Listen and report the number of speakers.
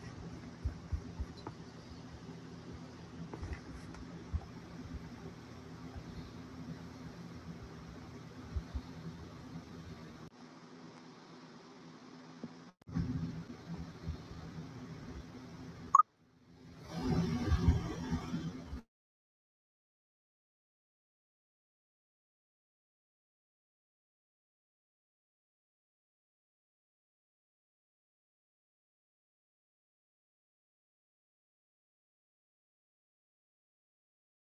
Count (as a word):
zero